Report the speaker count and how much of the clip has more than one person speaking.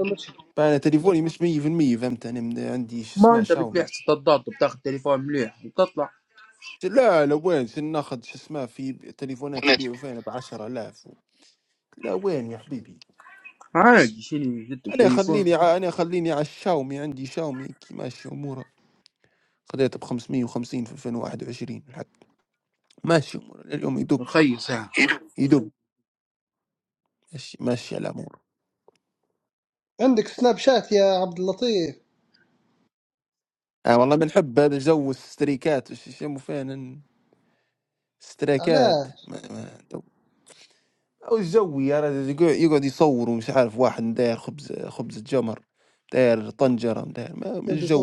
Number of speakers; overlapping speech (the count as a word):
three, about 4%